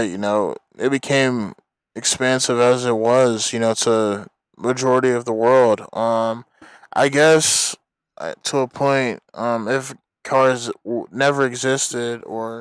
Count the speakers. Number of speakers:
1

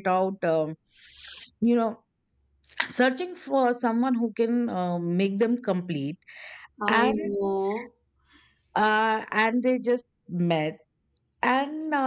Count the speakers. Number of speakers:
2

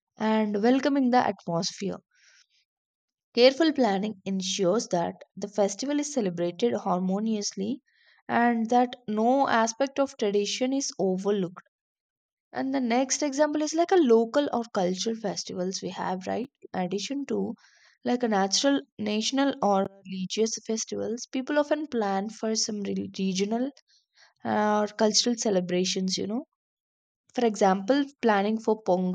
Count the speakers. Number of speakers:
1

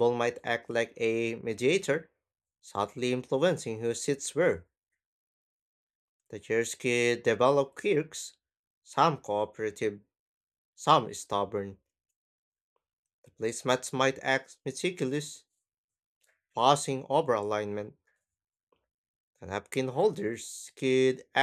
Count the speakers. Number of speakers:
1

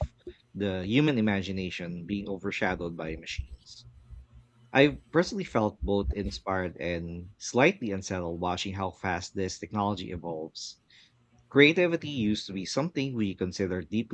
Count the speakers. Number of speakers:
1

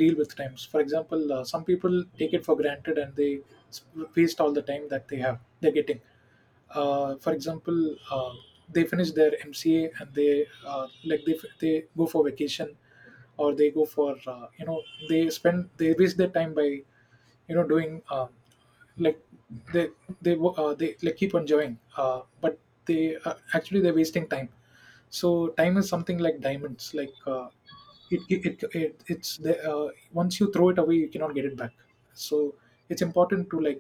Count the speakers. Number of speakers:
1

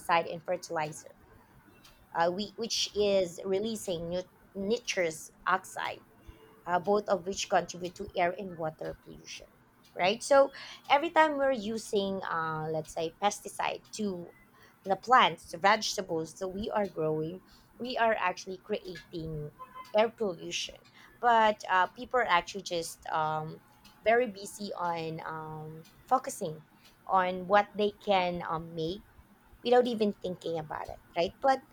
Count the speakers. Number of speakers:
1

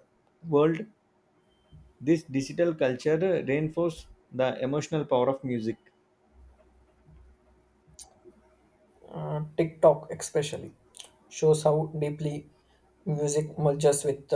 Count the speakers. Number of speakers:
2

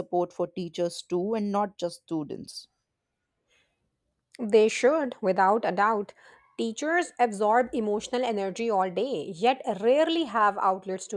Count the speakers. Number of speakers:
2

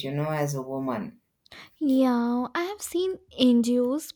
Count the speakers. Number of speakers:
2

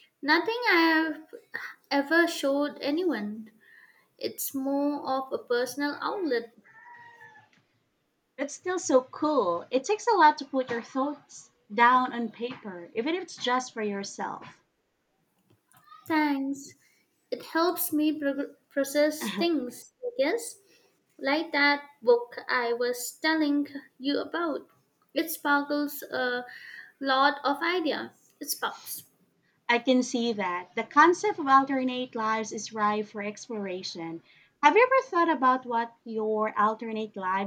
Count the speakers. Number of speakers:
2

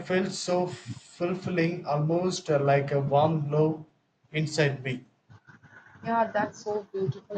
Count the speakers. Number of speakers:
2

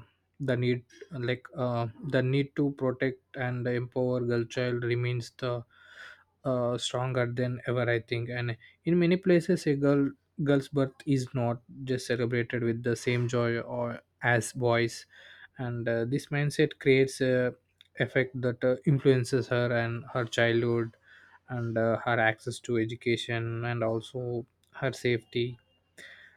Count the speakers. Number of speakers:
1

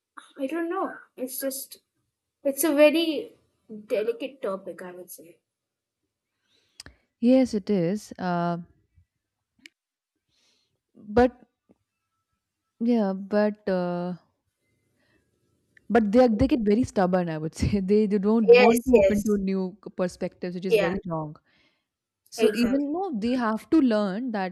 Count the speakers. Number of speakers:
2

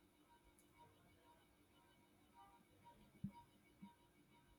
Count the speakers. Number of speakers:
0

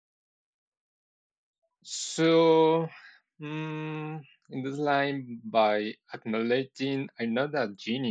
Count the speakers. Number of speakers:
1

